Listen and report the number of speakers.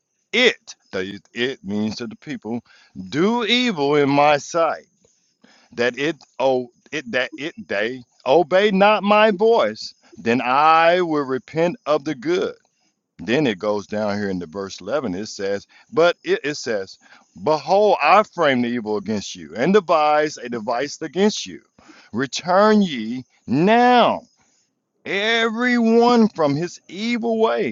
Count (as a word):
one